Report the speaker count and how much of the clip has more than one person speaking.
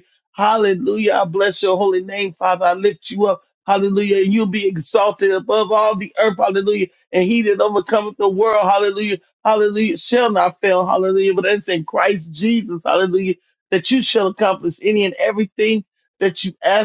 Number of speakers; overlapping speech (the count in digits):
1, no overlap